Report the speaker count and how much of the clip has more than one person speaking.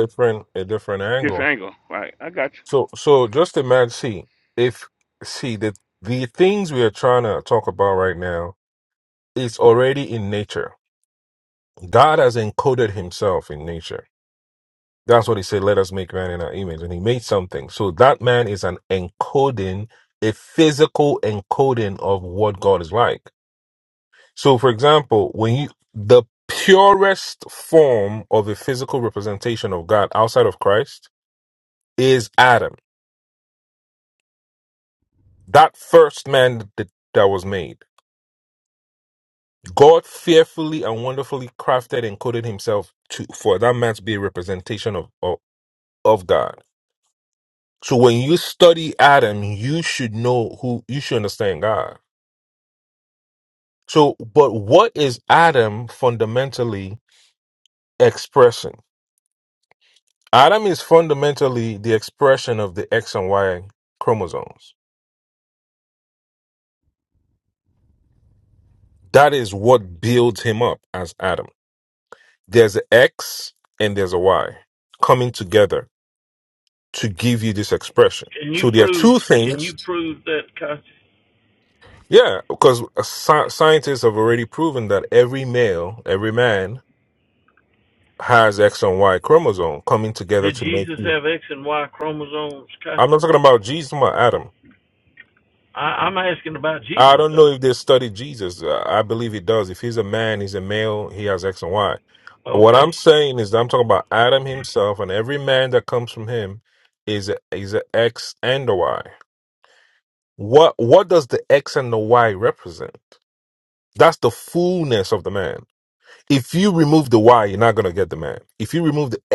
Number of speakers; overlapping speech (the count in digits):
3, about 3%